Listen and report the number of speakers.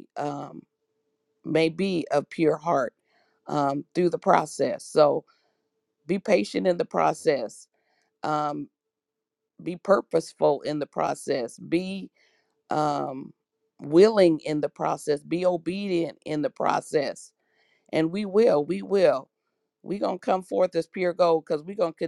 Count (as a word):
one